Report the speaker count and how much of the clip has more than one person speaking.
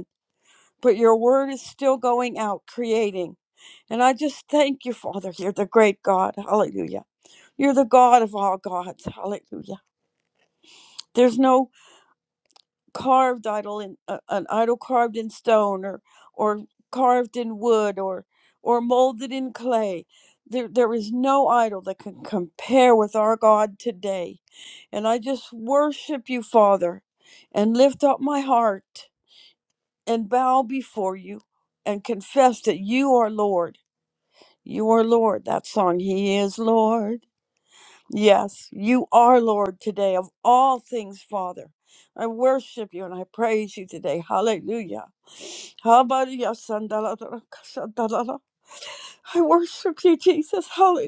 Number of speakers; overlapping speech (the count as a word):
one, no overlap